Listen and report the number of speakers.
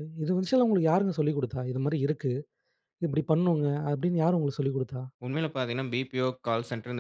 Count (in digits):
2